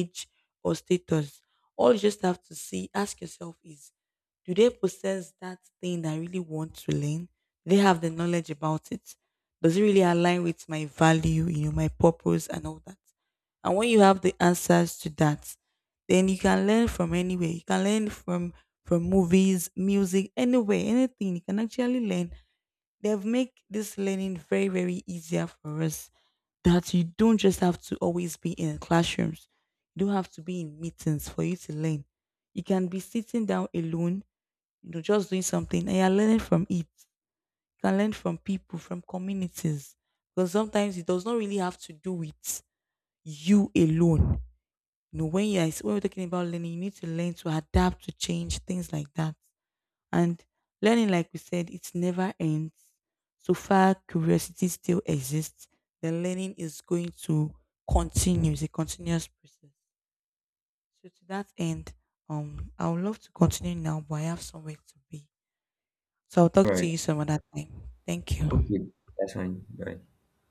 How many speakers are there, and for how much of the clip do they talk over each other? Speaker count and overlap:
2, about 1%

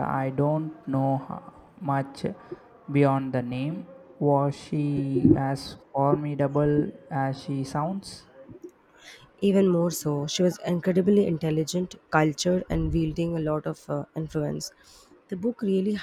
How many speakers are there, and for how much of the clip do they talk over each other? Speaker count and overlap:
2, no overlap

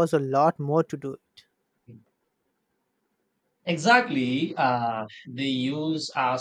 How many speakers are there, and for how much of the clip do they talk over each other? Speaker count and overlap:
2, no overlap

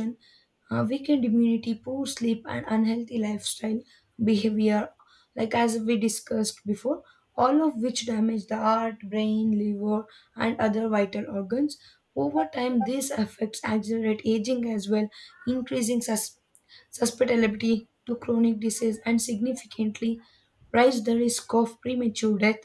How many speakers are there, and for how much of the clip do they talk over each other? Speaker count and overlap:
1, no overlap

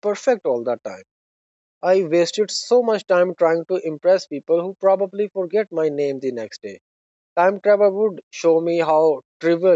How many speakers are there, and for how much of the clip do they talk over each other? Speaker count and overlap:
1, no overlap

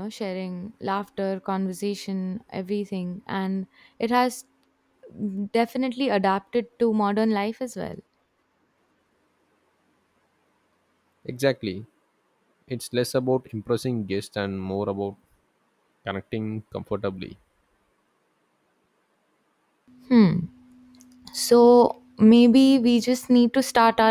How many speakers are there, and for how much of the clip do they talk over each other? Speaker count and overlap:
2, no overlap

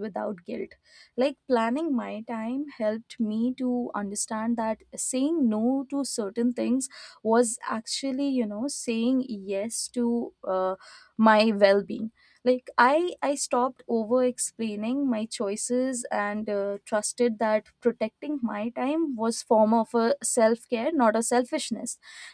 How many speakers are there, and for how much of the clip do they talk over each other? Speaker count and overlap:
1, no overlap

